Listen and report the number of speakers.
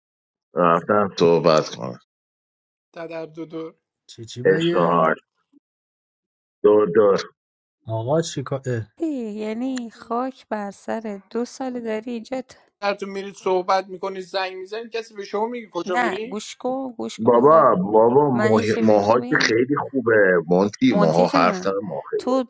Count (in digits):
4